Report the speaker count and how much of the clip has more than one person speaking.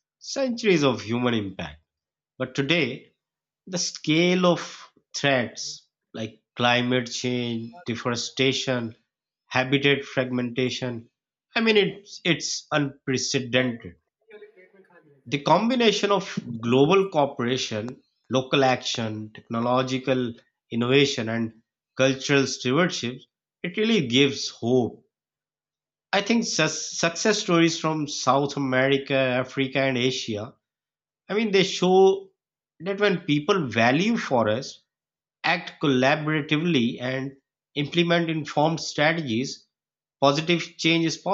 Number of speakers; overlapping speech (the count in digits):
1, no overlap